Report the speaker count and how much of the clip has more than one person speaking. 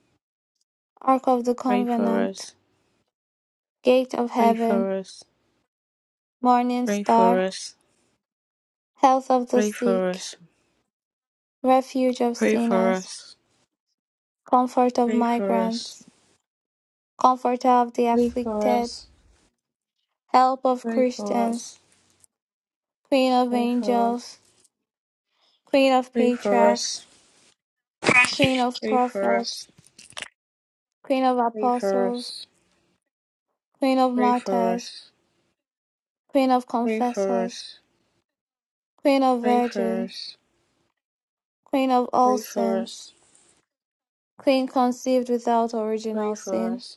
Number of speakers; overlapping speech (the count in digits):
2, about 23%